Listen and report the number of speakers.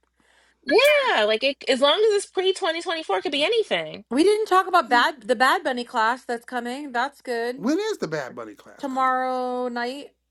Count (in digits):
3